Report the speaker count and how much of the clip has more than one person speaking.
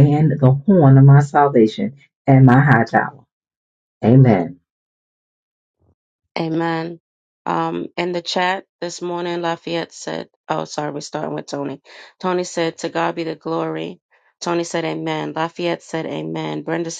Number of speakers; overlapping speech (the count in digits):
2, no overlap